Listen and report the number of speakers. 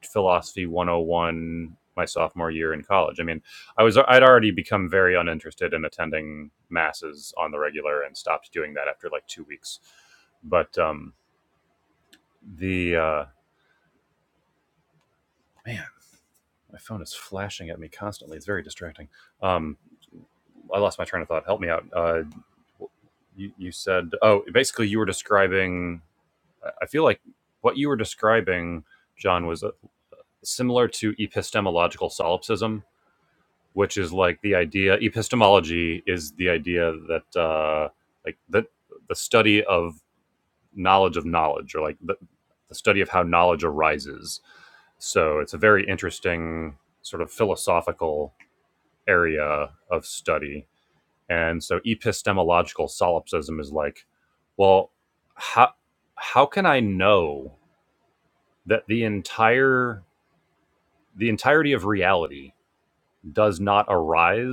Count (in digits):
1